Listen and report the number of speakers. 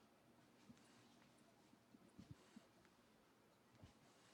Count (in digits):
0